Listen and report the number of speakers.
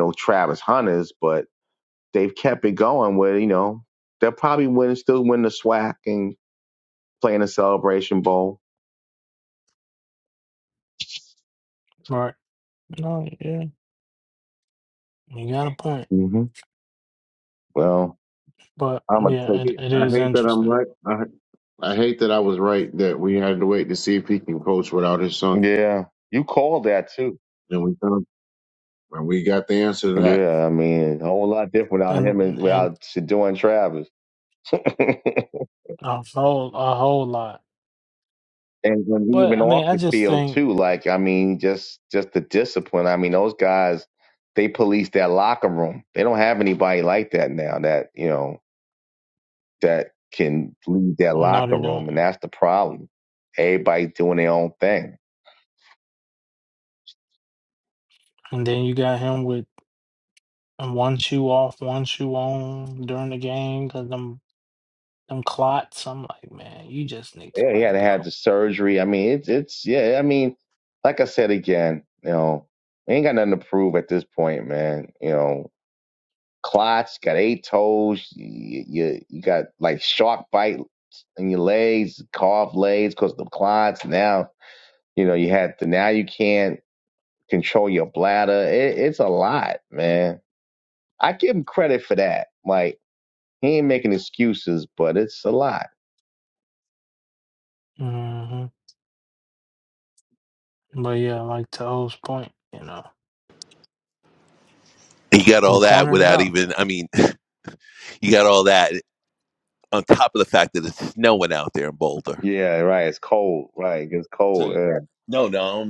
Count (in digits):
4